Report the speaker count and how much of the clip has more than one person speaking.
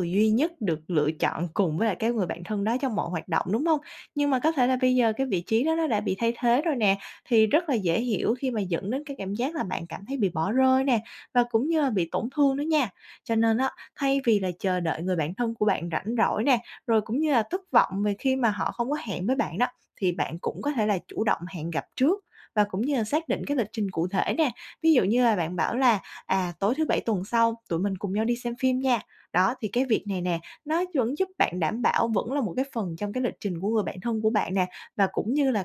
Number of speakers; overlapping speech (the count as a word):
one, no overlap